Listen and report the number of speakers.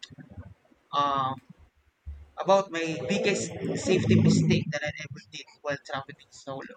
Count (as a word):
one